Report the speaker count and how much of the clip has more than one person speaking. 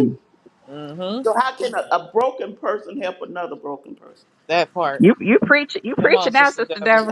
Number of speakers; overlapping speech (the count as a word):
three, about 18%